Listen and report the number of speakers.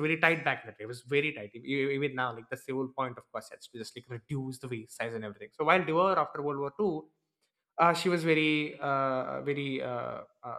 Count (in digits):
1